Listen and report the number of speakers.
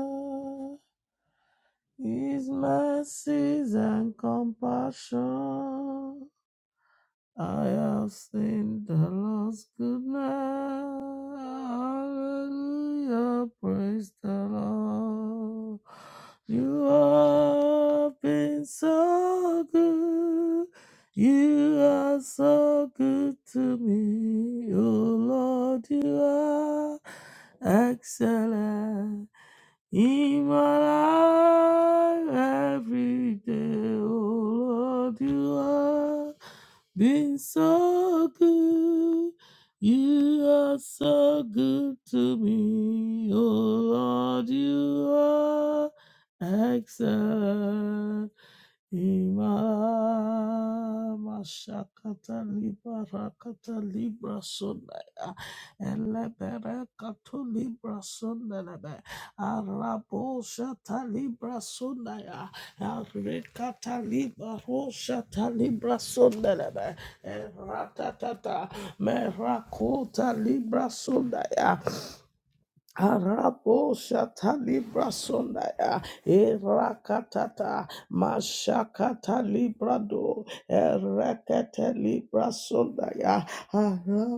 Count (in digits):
1